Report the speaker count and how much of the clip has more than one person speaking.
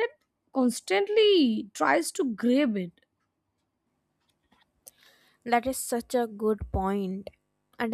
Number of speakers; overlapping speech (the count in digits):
2, no overlap